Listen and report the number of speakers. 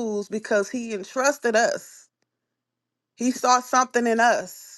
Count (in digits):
1